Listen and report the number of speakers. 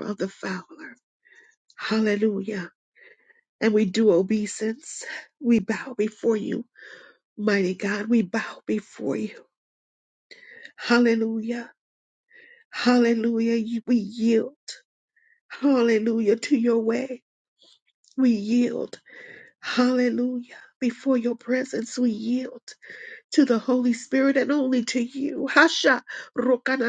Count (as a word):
one